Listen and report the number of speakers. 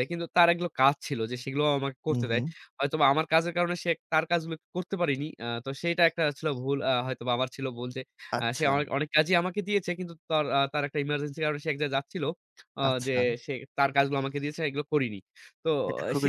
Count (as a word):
two